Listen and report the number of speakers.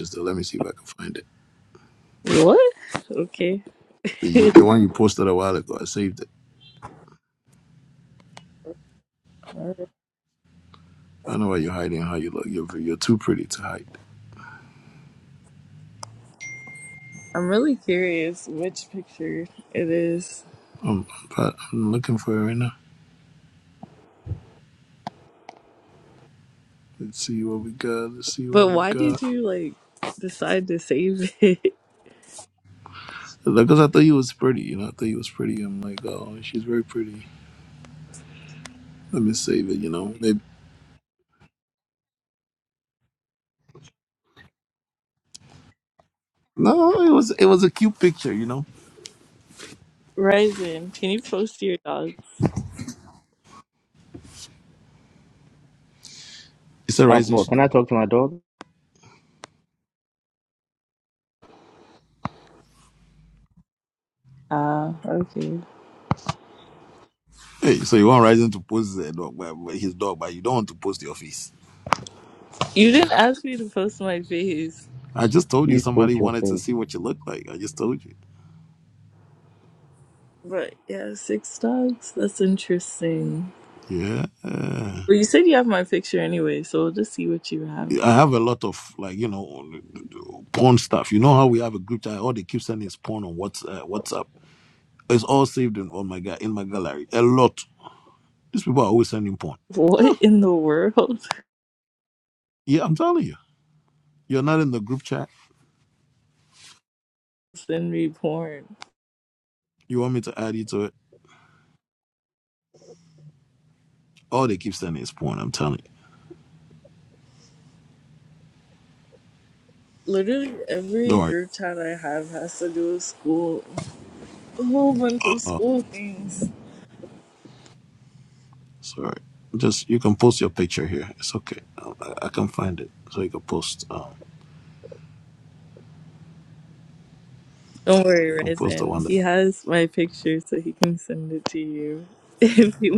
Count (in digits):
3